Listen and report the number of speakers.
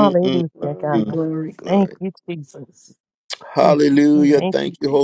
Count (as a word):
three